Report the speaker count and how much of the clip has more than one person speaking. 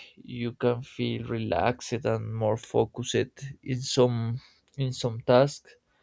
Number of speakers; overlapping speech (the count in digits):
1, no overlap